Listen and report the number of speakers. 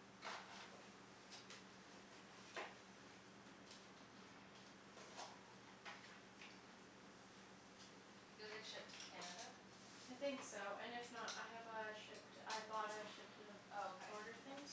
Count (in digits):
2